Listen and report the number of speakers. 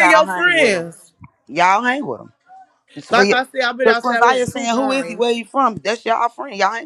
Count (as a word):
two